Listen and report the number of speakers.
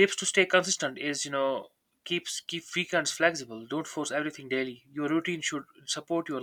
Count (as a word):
one